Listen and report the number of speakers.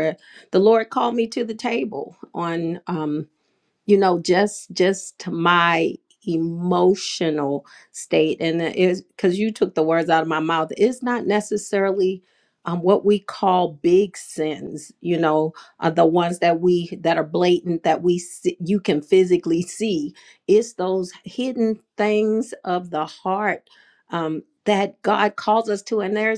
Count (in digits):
1